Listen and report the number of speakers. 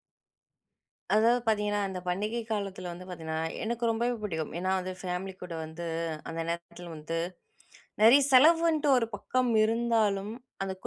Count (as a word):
one